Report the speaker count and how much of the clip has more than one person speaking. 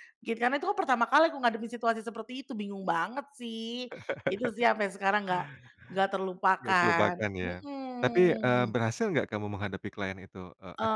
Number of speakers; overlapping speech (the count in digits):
2, about 14%